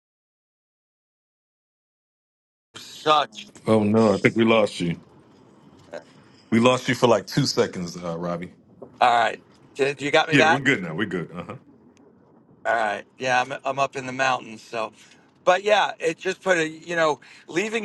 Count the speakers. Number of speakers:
2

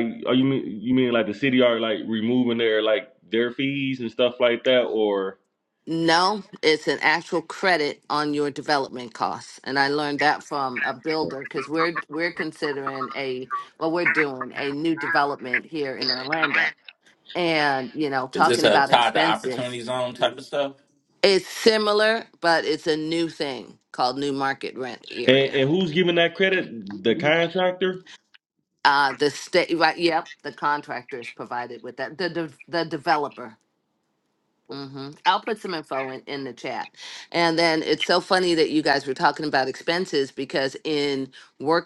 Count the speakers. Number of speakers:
3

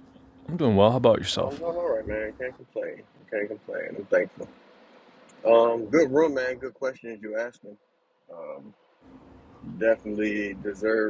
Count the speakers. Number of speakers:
2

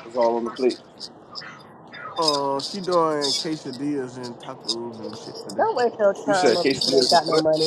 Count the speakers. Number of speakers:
3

